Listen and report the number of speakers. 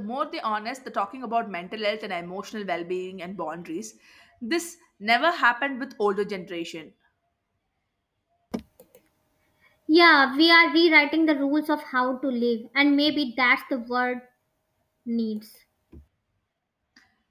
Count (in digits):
2